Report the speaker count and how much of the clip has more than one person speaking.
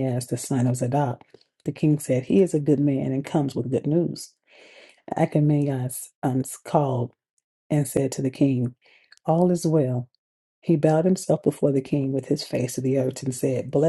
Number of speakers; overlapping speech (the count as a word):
one, no overlap